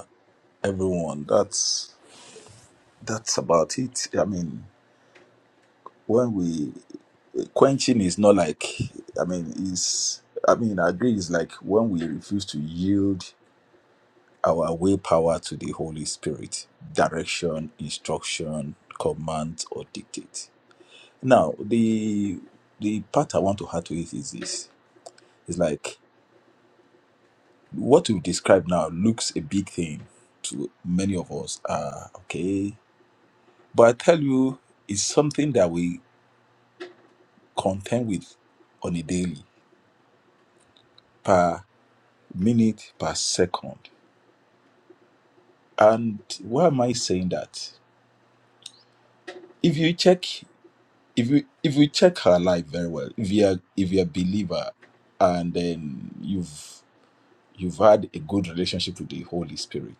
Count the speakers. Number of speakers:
1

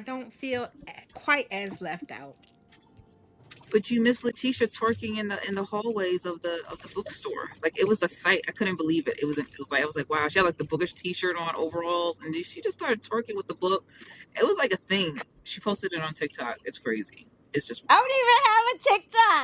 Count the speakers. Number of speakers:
3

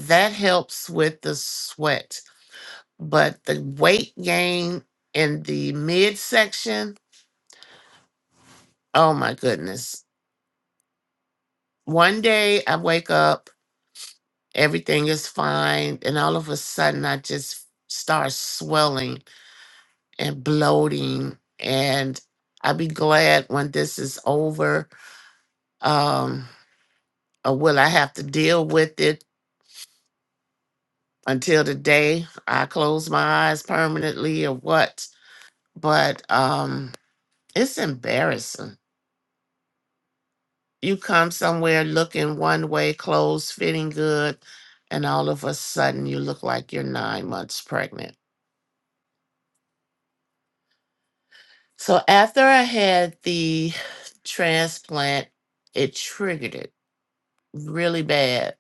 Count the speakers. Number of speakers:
1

